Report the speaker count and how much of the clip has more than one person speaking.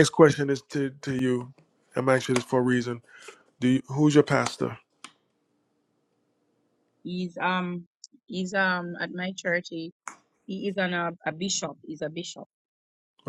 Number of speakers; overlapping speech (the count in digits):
2, no overlap